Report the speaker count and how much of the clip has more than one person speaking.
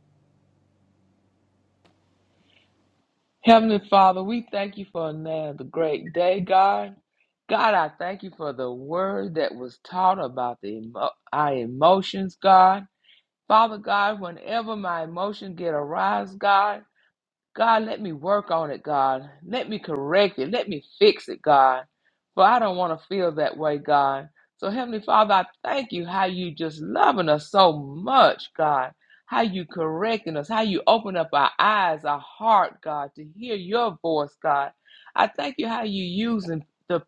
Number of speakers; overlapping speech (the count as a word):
one, no overlap